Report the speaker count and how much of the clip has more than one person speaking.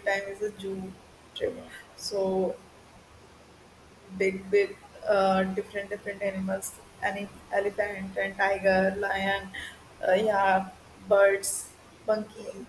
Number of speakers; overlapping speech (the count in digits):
1, no overlap